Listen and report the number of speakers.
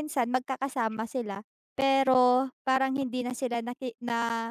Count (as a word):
one